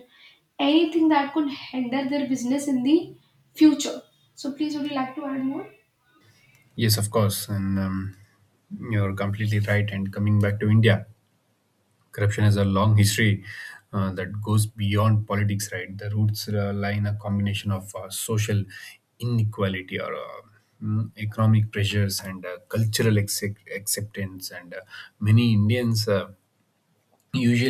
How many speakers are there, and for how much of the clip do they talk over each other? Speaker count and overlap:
2, no overlap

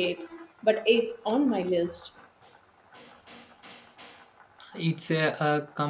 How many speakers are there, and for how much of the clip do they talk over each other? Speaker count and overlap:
2, no overlap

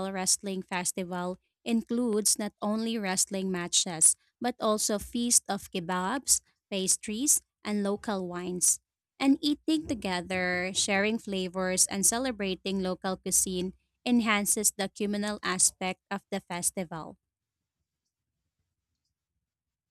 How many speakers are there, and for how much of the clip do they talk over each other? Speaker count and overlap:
1, no overlap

